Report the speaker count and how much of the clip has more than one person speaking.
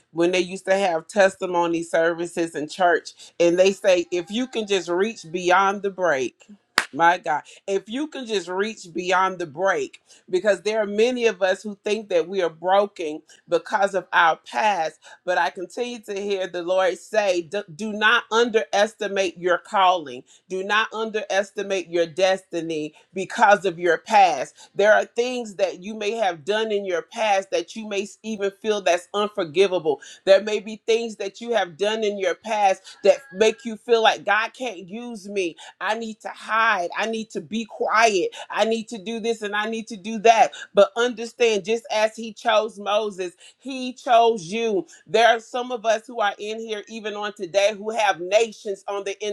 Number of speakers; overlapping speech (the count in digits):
1, no overlap